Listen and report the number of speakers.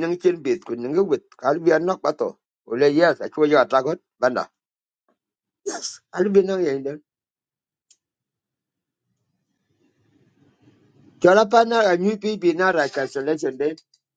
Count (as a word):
one